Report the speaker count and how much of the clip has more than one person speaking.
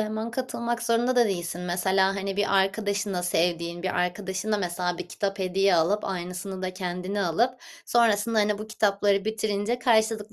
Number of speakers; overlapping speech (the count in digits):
1, no overlap